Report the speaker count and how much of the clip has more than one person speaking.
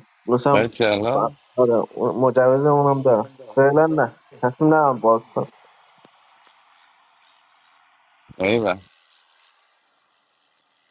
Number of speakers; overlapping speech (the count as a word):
two, about 1%